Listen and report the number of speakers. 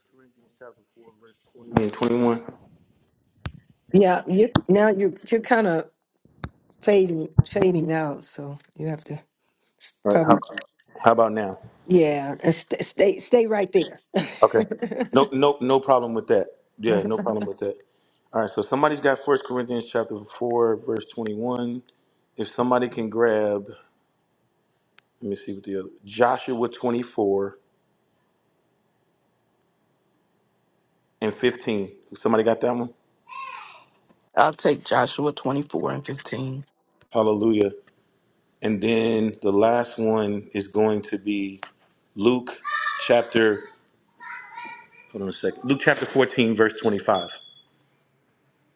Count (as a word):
three